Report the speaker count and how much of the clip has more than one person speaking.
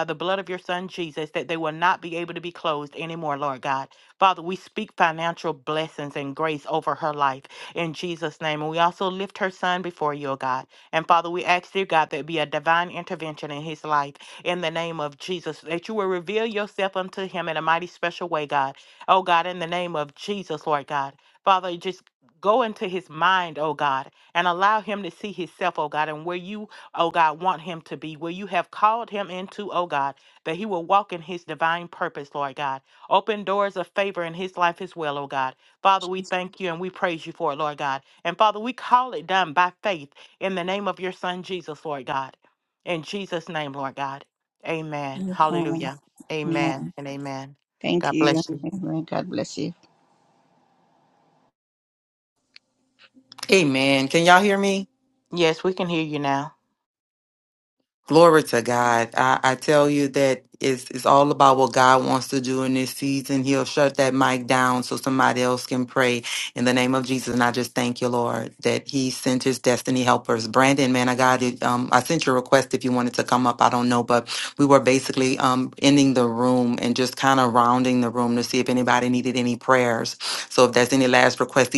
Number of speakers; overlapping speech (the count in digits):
3, about 1%